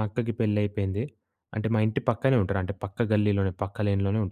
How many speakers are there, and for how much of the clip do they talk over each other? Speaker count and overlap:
1, no overlap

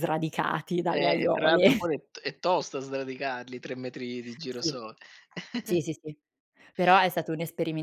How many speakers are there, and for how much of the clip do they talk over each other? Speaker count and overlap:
2, about 13%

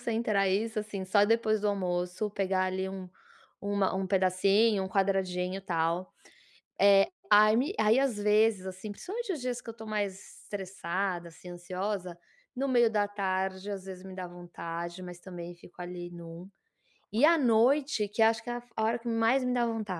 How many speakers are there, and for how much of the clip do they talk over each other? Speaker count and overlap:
1, no overlap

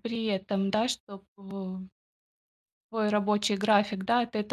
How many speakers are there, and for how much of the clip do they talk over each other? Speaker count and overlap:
1, no overlap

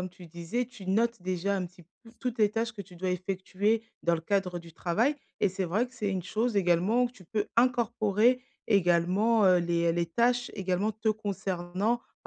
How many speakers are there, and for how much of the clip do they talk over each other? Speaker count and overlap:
1, no overlap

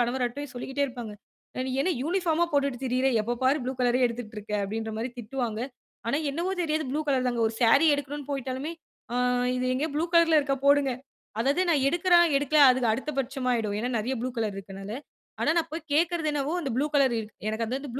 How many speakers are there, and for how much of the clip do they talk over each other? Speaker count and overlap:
1, no overlap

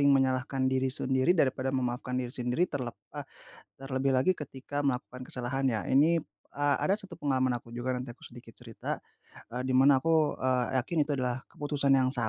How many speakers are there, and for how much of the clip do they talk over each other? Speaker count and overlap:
1, no overlap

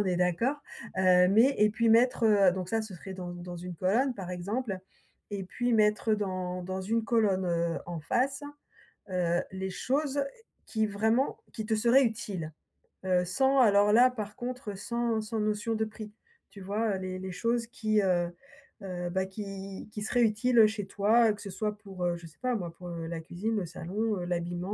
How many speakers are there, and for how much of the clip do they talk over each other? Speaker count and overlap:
1, no overlap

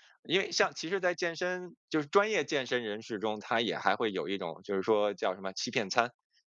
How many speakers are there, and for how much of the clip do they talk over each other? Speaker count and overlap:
1, no overlap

